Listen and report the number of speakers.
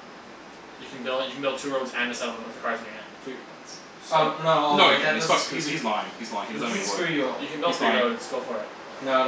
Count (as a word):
three